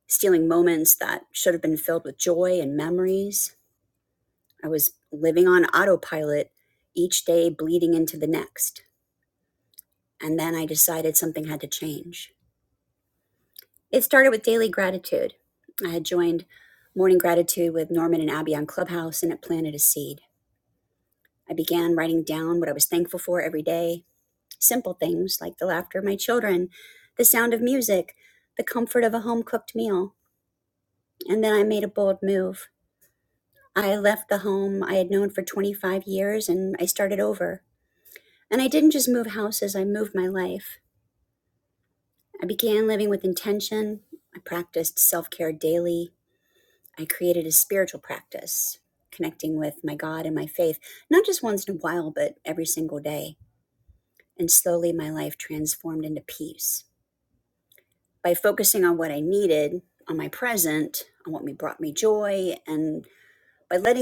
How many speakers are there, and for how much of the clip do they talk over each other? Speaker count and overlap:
one, no overlap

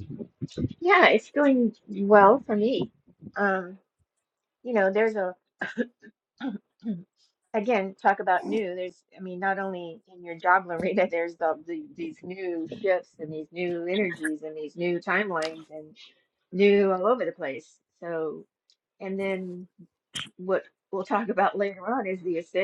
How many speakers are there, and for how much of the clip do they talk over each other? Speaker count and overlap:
one, no overlap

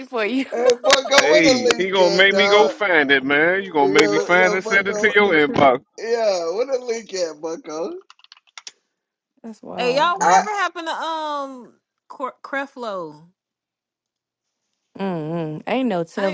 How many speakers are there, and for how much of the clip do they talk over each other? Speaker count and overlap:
four, about 24%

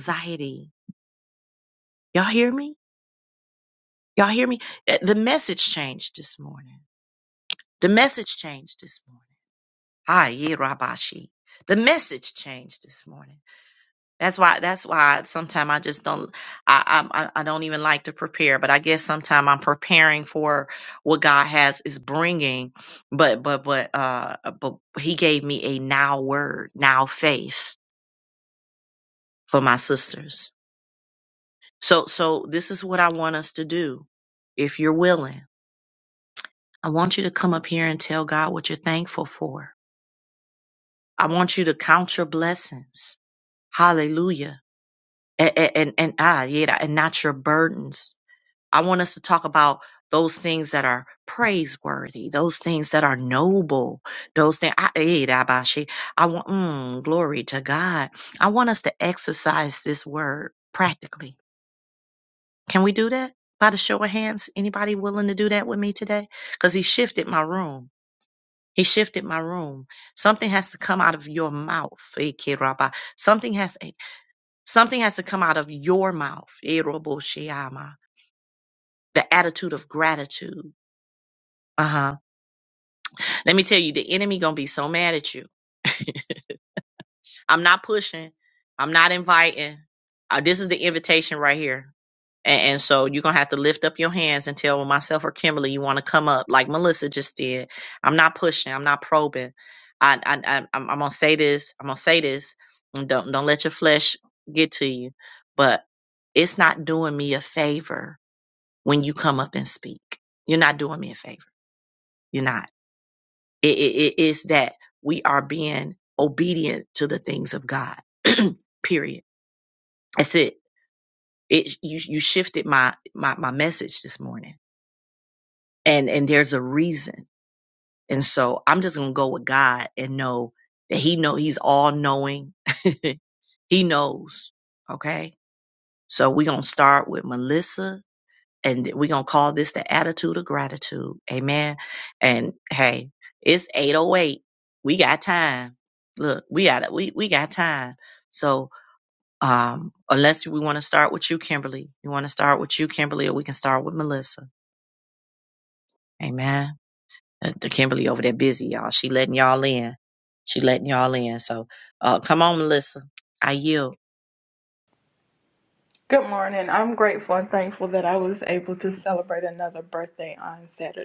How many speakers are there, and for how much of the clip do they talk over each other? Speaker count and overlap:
two, no overlap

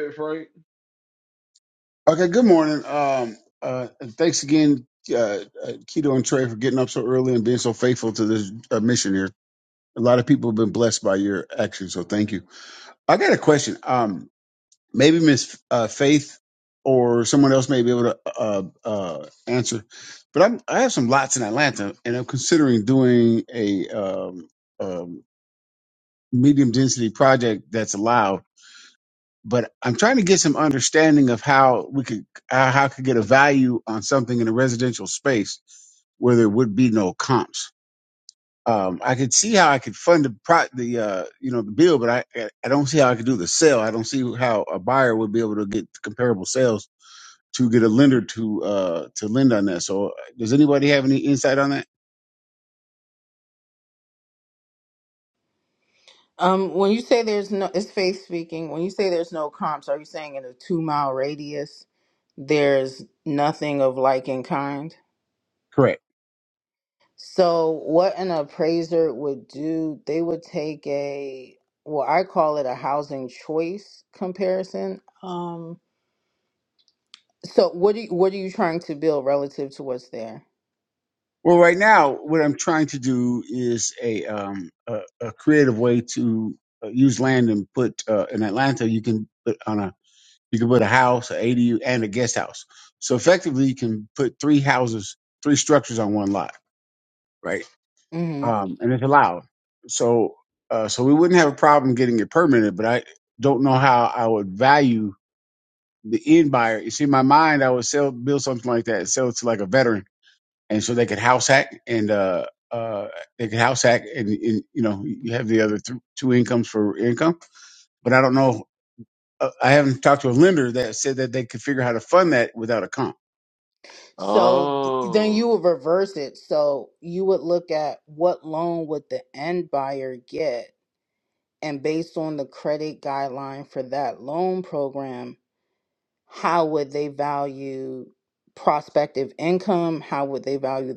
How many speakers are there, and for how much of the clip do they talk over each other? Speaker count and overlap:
three, about 1%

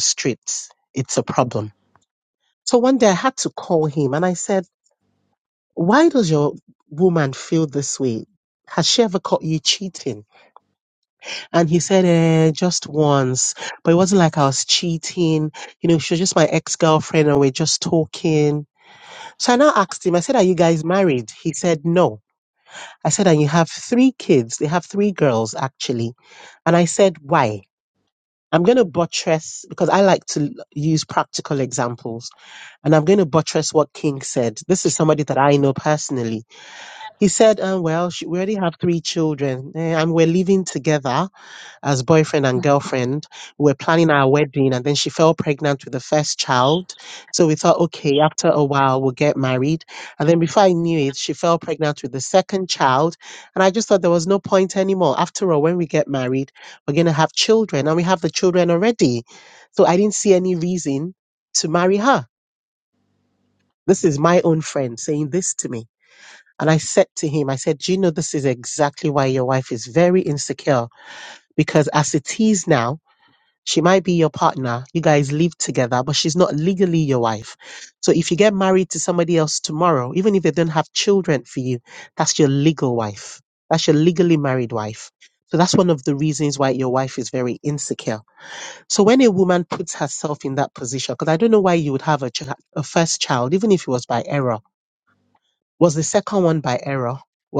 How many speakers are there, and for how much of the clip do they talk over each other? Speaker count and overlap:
one, no overlap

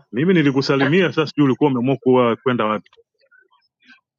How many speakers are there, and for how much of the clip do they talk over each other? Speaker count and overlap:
one, no overlap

